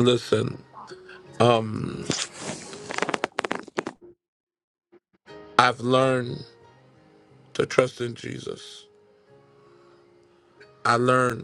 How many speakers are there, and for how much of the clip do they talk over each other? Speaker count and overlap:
one, no overlap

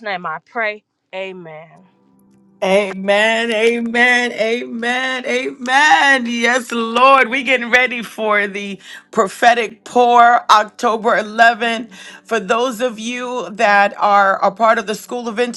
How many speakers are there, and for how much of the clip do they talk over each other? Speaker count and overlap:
two, no overlap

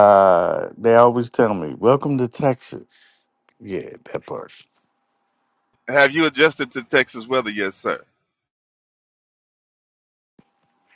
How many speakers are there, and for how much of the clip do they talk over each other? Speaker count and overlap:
two, no overlap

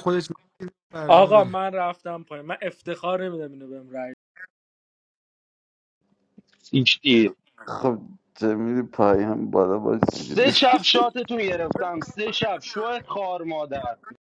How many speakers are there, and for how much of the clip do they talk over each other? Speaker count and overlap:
four, about 6%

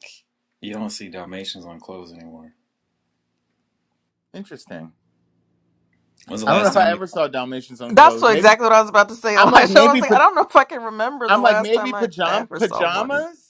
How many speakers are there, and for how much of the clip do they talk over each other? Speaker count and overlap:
three, about 30%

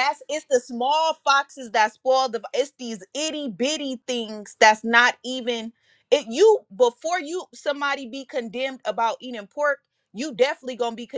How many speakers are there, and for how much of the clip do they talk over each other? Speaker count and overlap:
one, no overlap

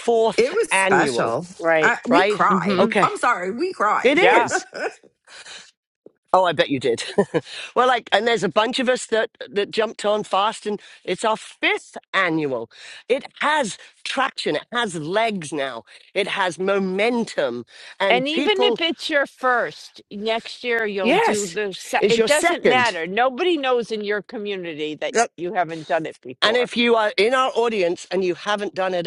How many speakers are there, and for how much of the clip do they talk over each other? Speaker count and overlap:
three, about 18%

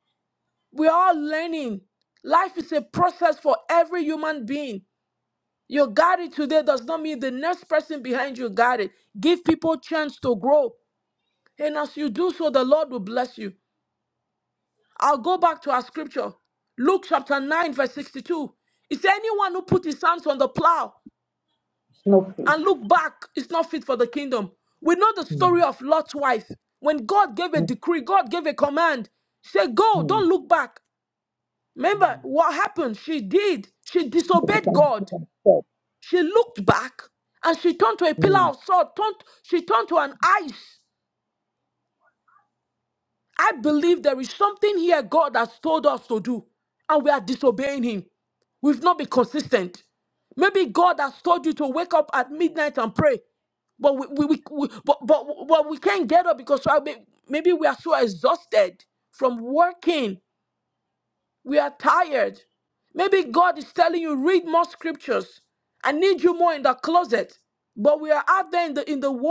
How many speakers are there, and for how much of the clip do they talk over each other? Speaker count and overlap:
two, about 3%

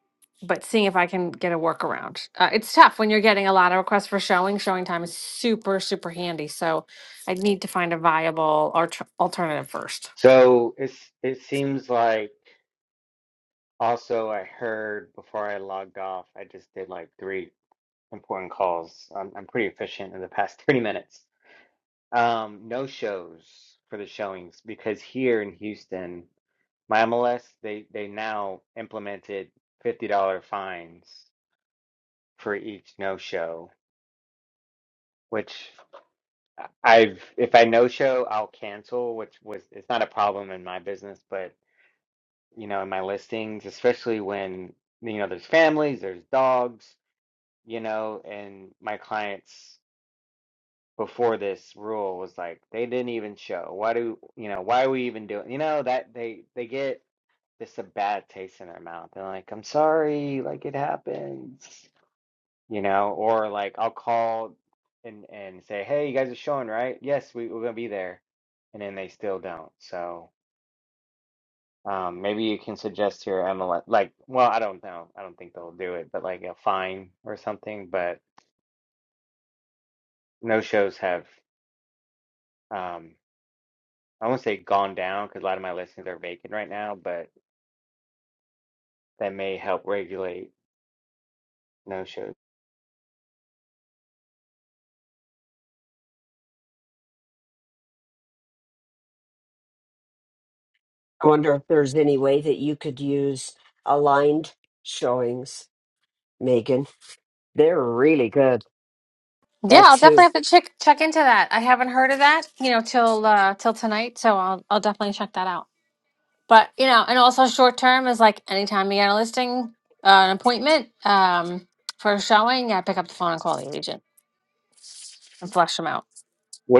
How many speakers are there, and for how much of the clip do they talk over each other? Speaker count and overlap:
three, under 1%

